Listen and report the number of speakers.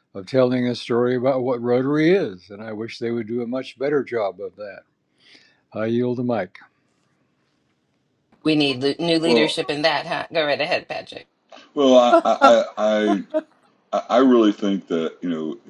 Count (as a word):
three